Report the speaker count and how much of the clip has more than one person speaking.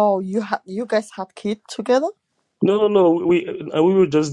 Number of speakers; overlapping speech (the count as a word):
two, no overlap